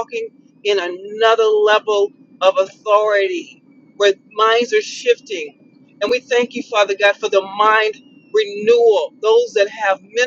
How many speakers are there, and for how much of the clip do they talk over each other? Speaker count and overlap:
1, no overlap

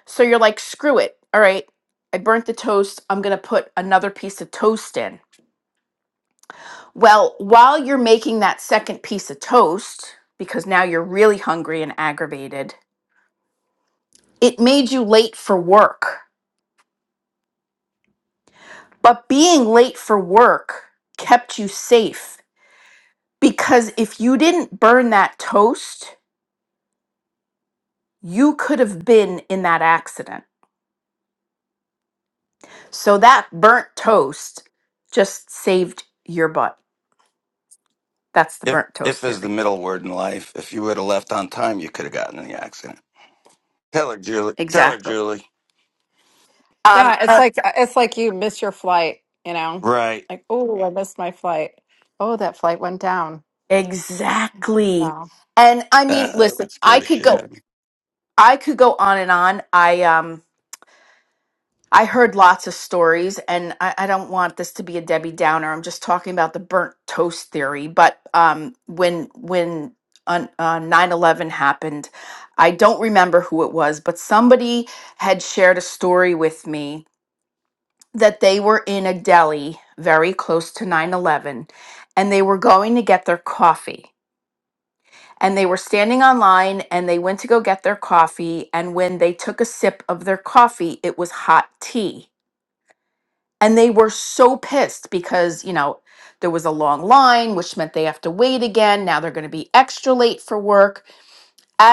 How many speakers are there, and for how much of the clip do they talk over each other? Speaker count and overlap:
3, about 3%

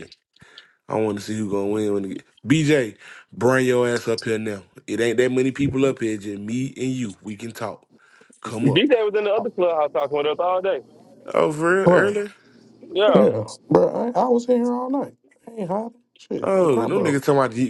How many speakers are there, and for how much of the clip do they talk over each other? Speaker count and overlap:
3, about 8%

